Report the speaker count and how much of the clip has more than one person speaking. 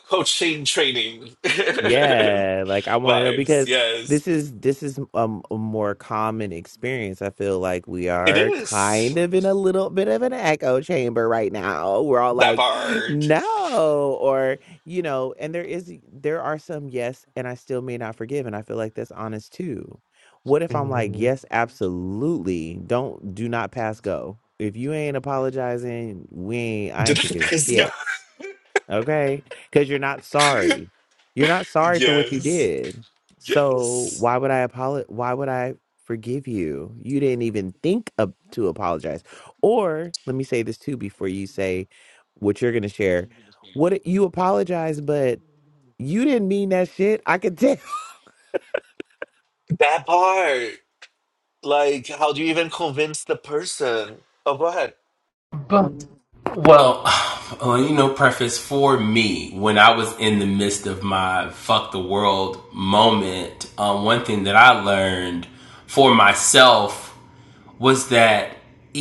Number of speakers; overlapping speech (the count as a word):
three, about 7%